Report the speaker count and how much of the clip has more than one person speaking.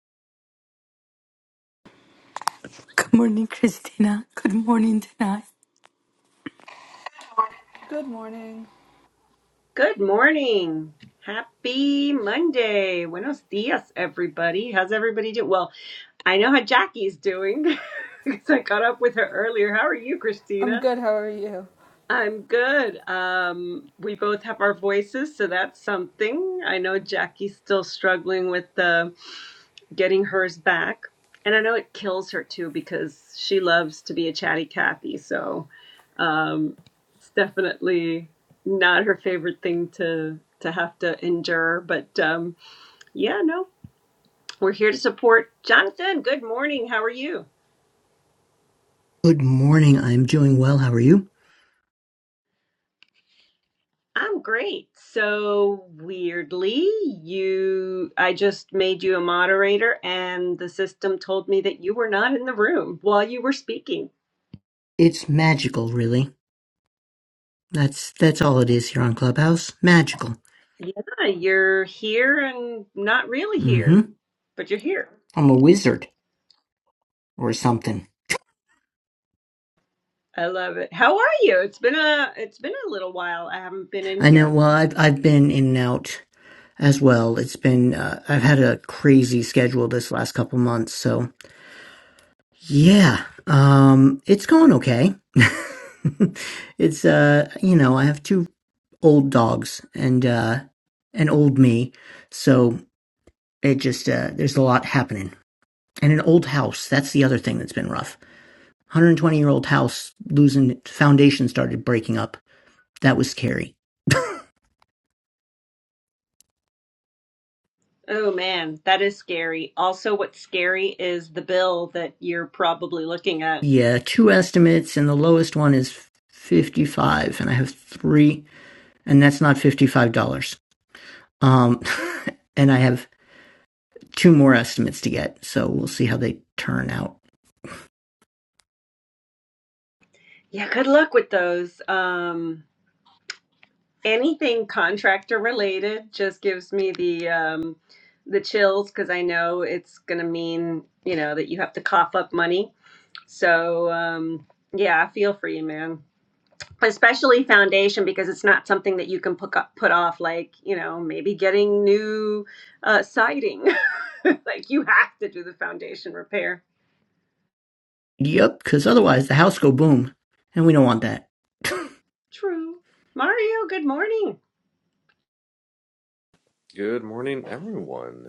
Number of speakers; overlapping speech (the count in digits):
5, about 1%